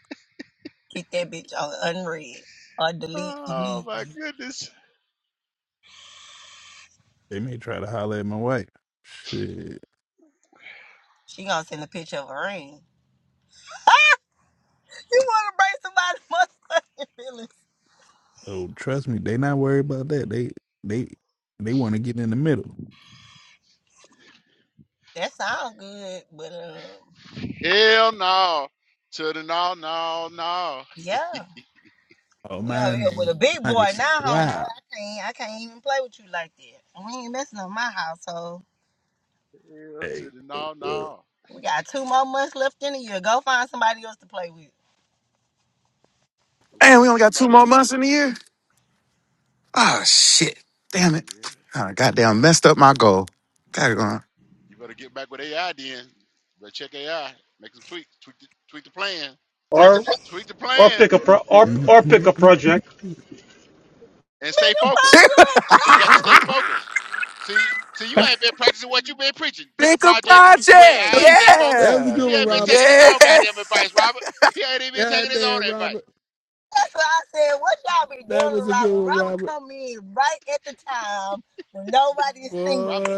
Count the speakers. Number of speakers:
5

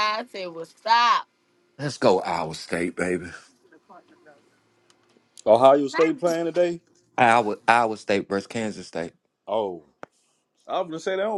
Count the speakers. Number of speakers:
3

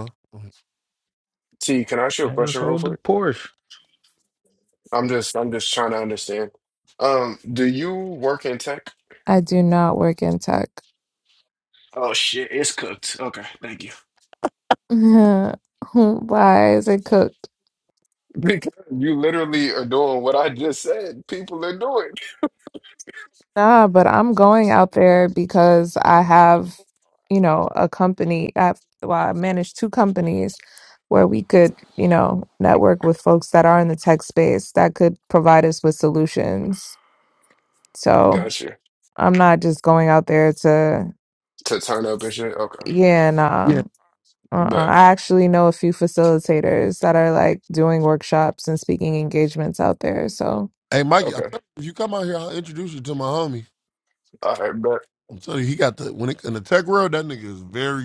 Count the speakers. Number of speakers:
4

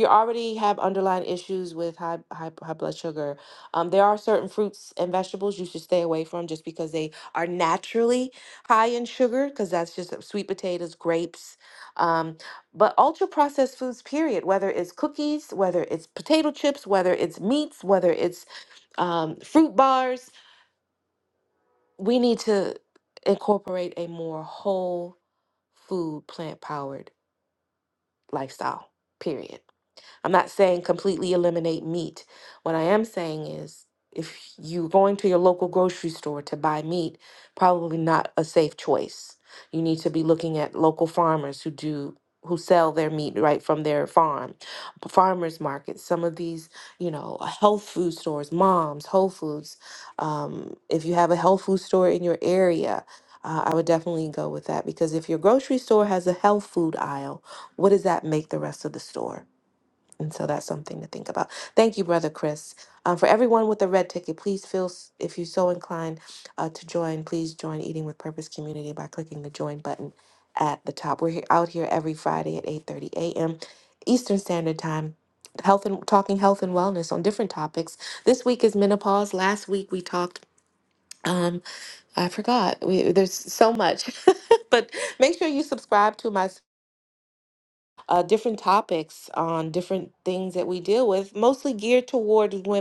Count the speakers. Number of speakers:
1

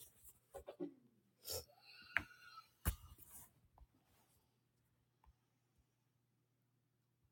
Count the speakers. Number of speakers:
0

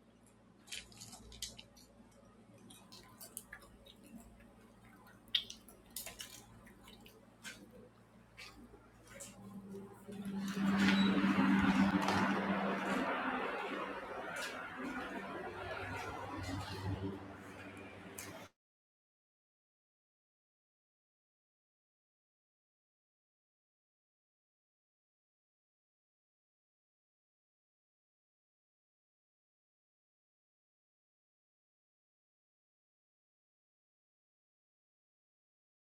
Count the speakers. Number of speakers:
0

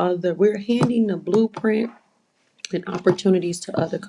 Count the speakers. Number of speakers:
1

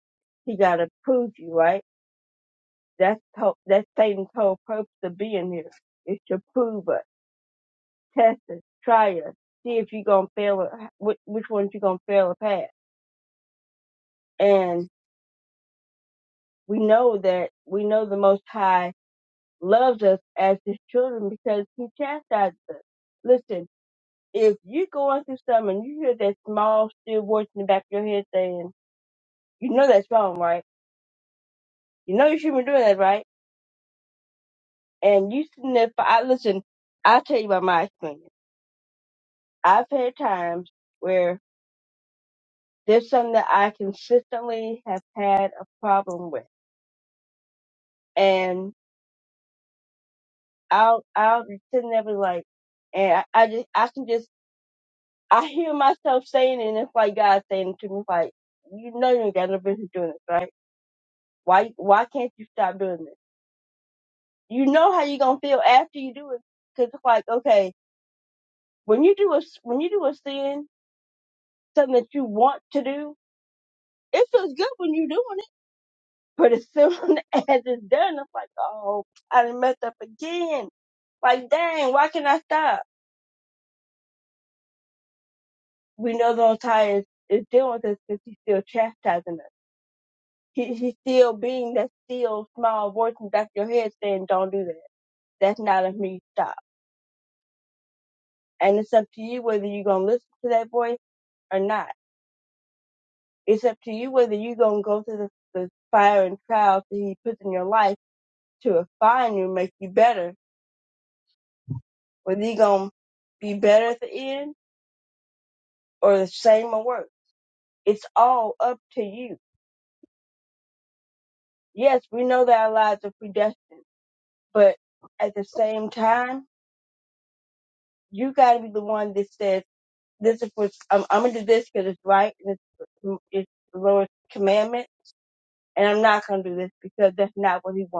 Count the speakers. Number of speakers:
1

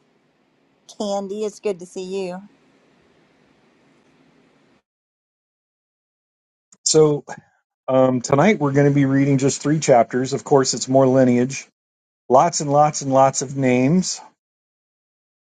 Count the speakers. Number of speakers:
2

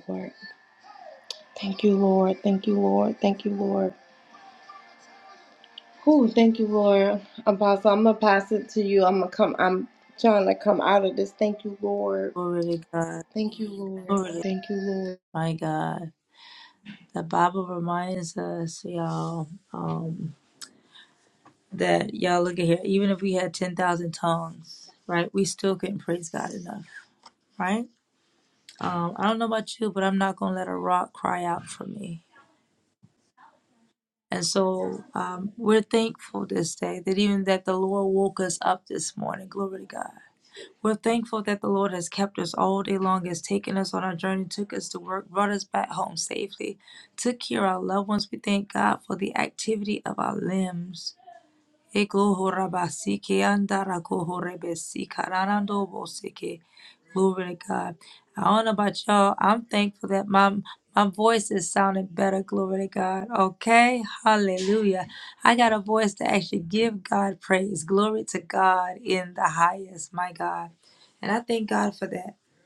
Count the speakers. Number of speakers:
2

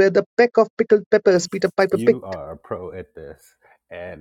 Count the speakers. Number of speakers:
2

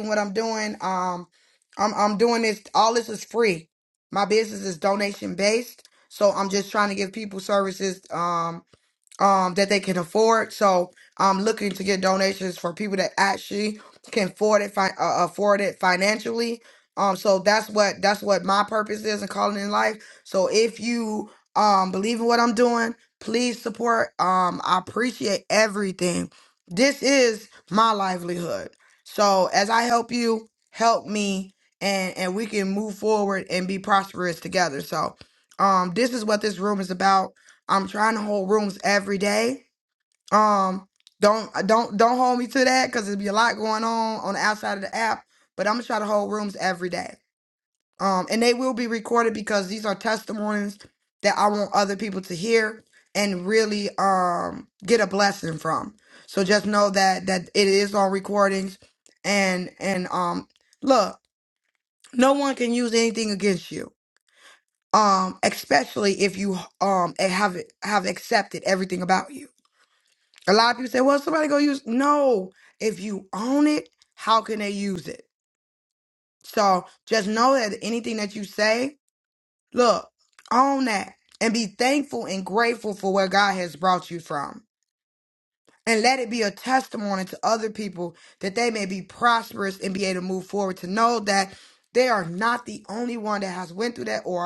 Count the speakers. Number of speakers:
1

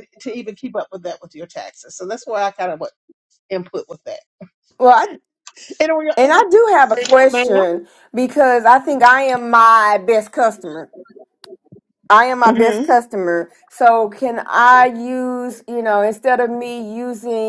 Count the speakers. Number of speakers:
2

